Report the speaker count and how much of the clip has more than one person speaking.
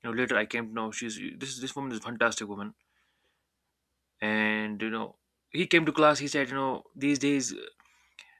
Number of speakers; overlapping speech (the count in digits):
1, no overlap